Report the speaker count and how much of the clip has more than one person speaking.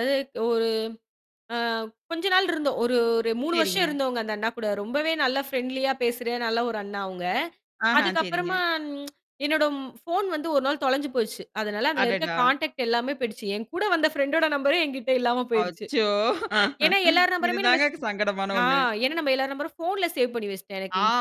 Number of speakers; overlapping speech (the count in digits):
2, about 13%